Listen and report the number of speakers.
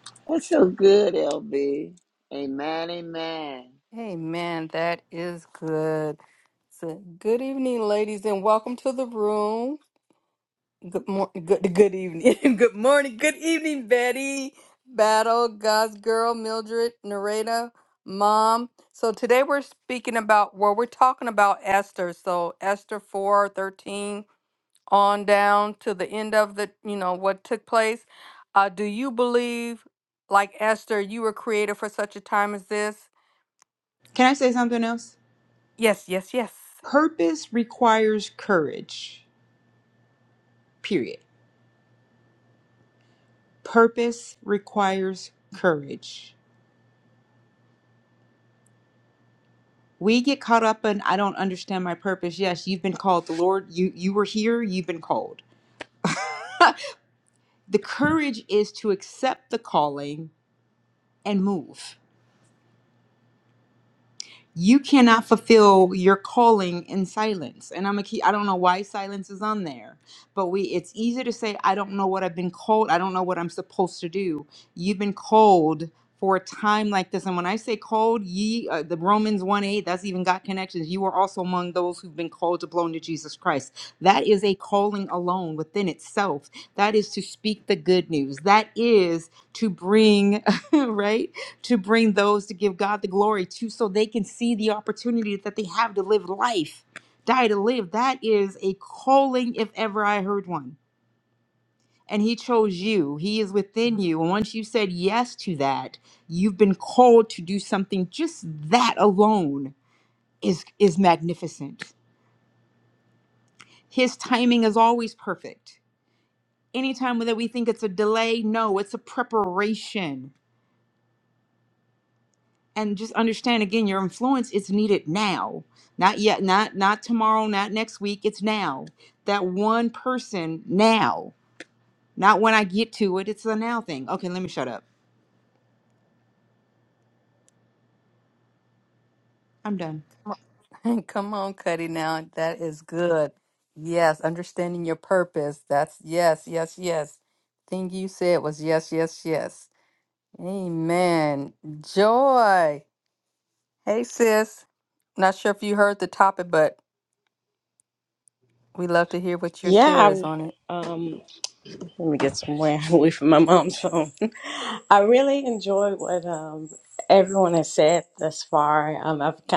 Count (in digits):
4